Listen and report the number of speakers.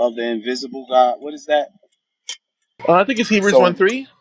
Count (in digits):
2